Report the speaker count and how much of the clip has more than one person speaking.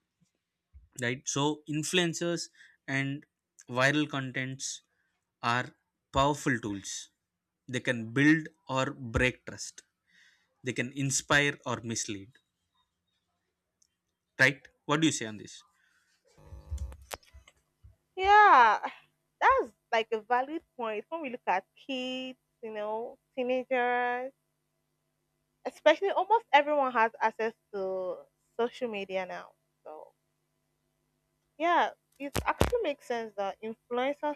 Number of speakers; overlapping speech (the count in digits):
2, no overlap